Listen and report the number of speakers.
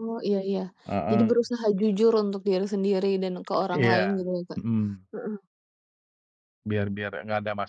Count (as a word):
two